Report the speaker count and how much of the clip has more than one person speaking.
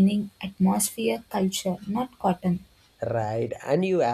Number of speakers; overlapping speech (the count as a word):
two, no overlap